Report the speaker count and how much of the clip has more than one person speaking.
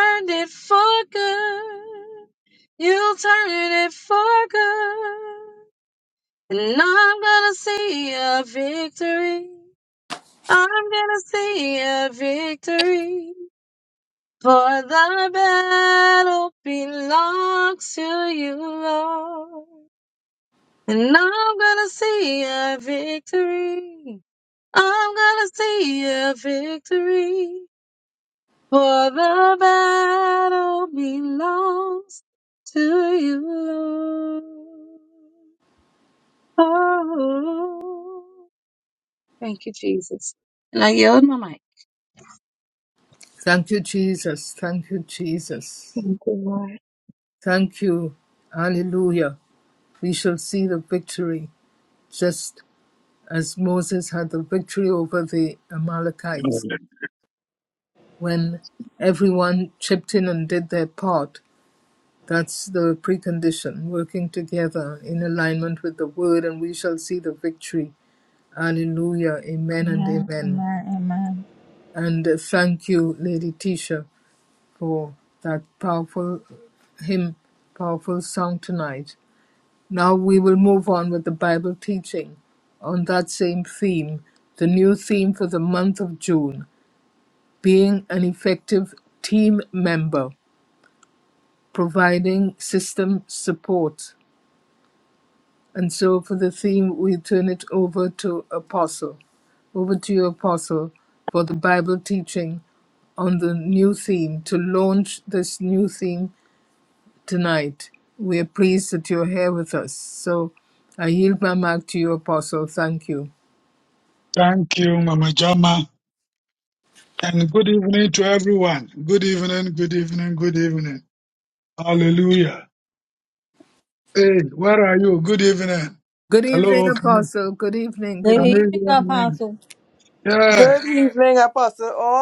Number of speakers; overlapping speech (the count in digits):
5, about 2%